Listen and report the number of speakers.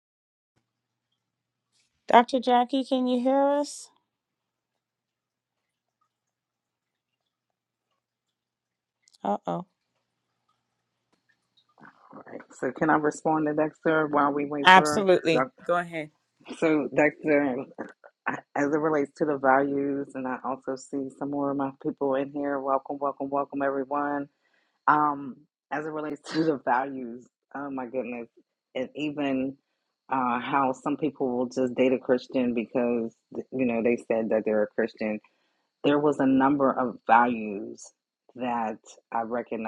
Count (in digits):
2